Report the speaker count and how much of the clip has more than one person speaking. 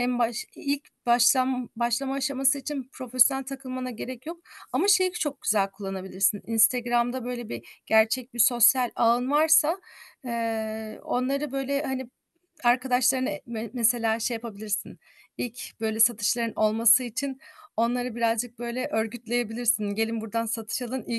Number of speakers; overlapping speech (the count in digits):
1, no overlap